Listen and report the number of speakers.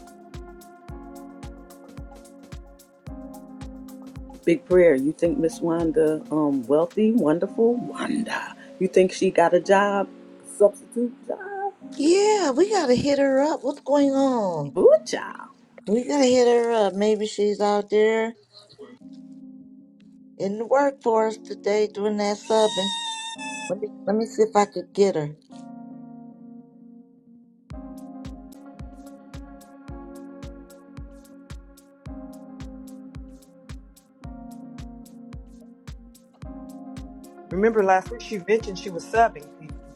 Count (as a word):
three